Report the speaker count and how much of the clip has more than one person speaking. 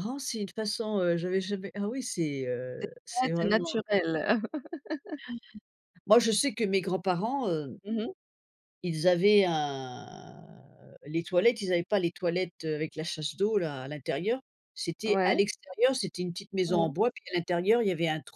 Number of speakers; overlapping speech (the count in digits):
2, about 9%